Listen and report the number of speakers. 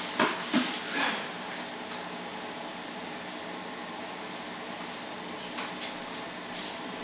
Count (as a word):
zero